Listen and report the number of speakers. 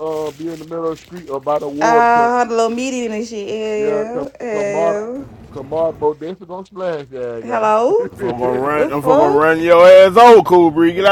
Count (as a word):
three